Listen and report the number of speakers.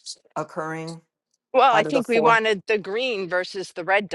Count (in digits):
2